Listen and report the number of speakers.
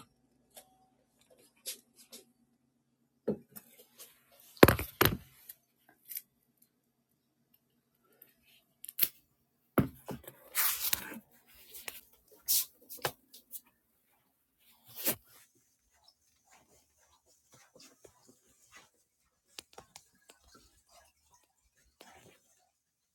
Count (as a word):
zero